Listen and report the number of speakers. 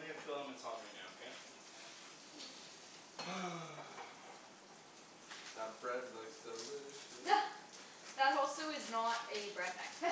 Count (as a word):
three